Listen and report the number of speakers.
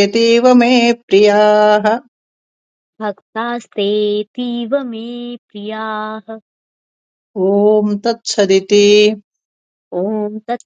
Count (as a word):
two